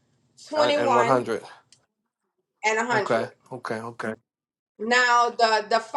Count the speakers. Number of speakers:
two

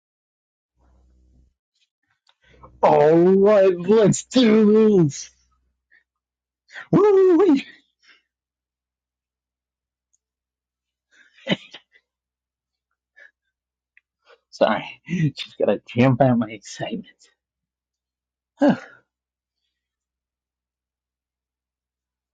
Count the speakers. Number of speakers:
one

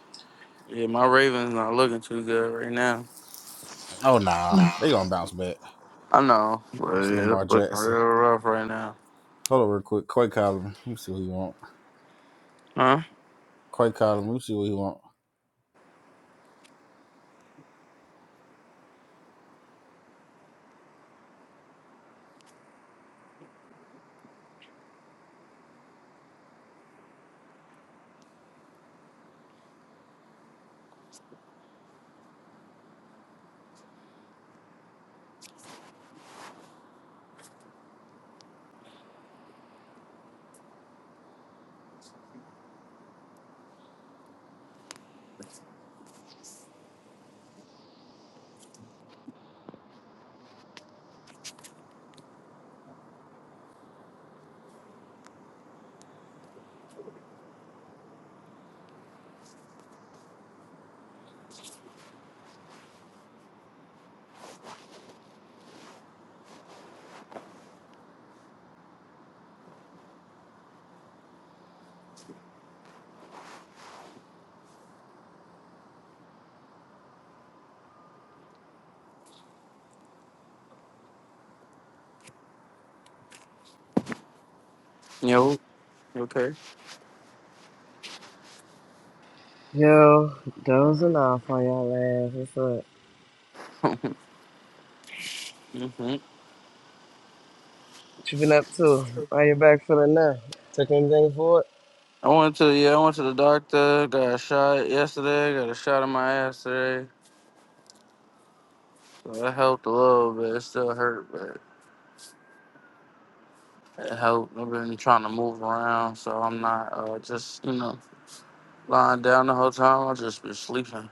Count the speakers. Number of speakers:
three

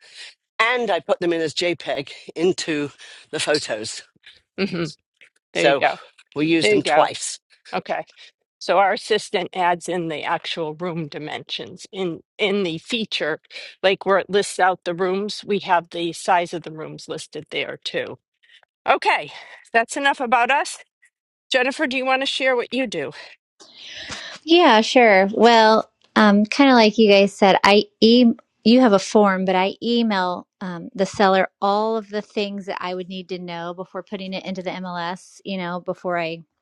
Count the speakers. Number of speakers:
three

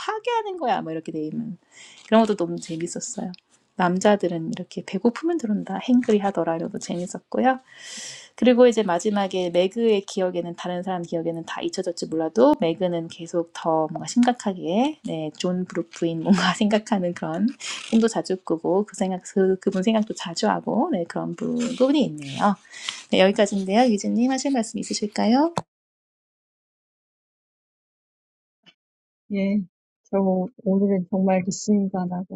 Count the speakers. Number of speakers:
two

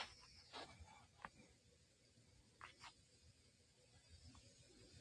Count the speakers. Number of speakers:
zero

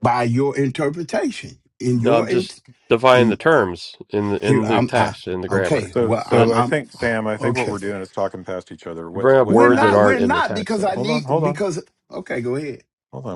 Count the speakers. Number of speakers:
three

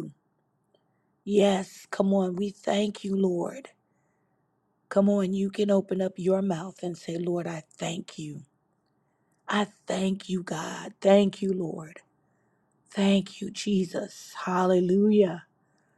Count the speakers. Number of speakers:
one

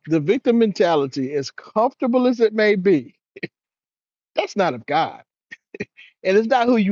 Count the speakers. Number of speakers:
one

